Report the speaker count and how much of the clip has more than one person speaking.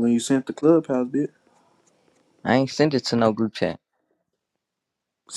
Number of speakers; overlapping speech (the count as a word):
two, no overlap